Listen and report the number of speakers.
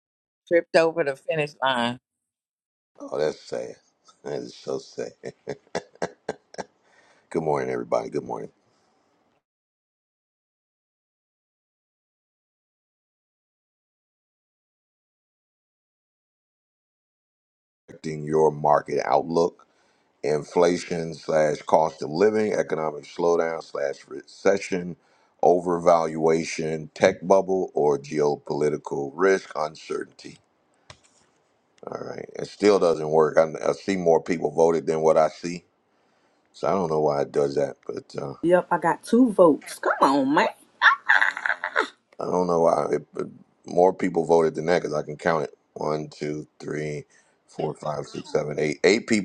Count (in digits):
3